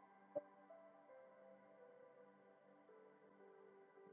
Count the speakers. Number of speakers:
zero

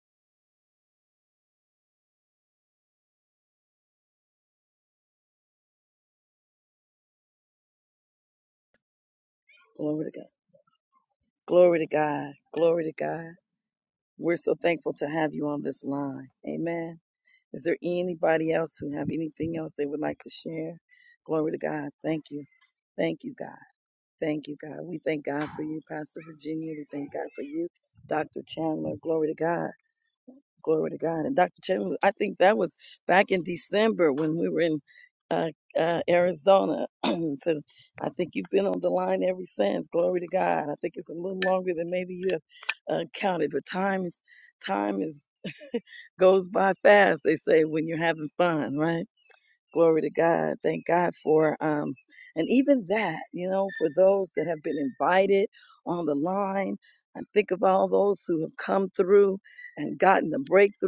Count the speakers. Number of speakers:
one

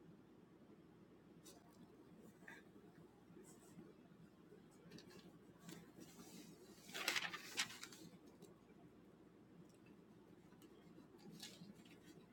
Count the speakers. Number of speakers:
zero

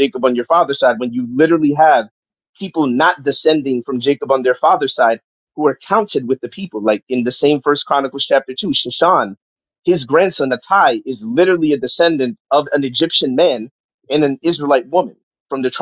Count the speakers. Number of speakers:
one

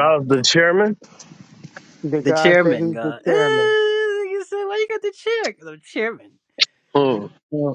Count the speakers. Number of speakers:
three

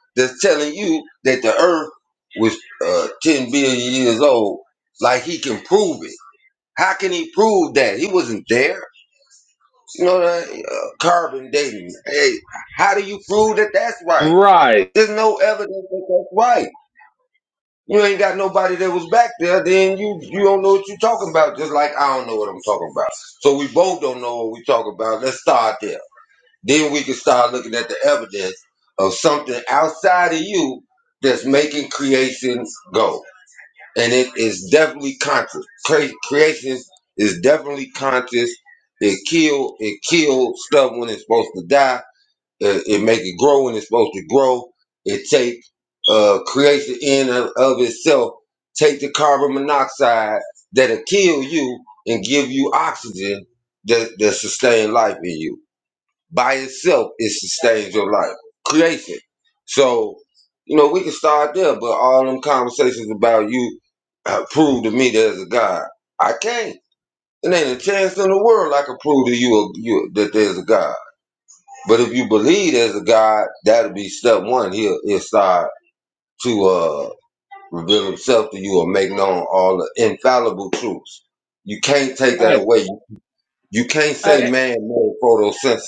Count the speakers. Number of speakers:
two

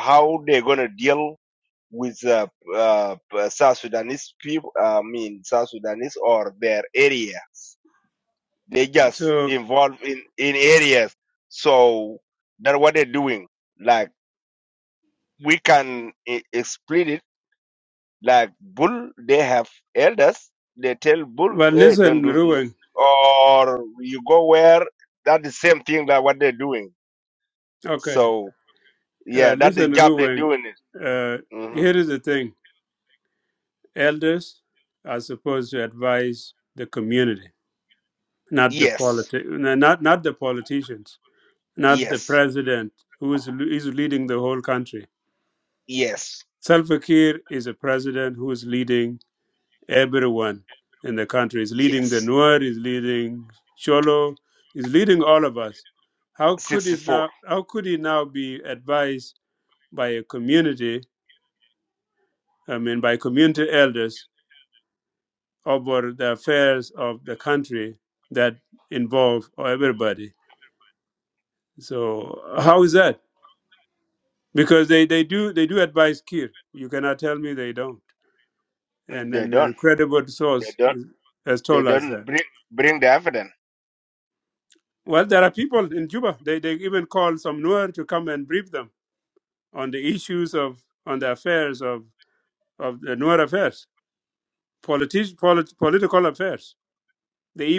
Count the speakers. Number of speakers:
two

